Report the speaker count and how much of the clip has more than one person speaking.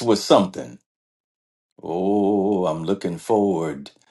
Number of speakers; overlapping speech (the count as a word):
one, no overlap